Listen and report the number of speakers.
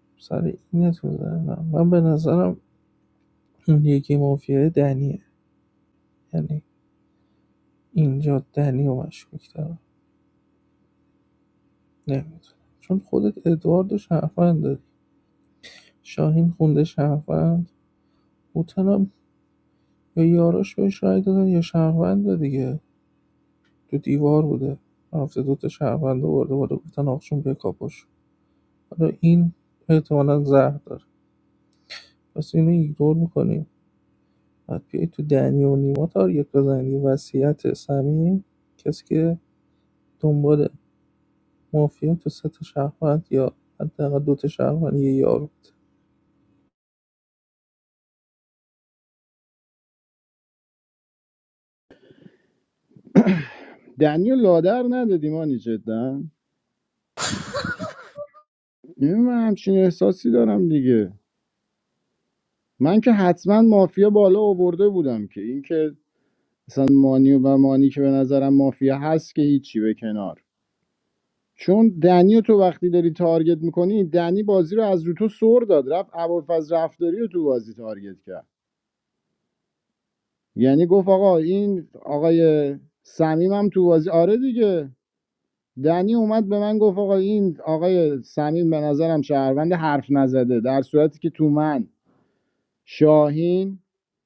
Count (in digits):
2